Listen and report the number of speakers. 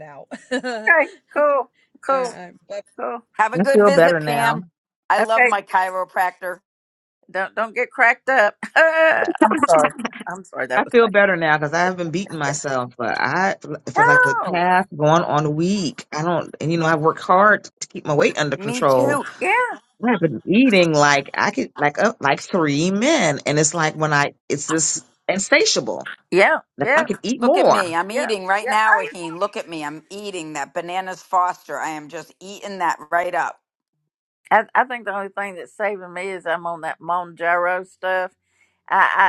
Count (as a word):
four